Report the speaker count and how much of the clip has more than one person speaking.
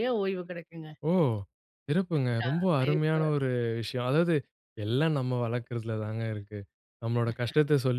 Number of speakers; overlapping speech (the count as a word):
two, about 6%